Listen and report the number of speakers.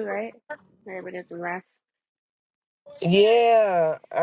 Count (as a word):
two